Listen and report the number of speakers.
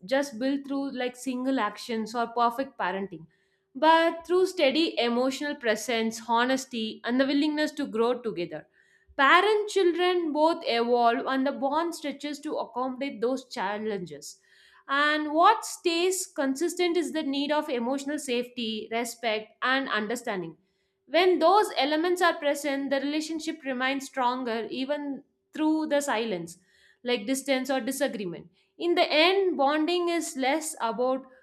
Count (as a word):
one